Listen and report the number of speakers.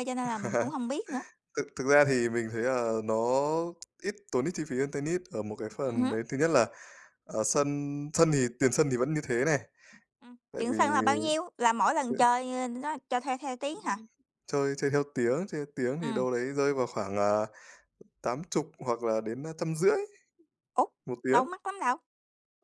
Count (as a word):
two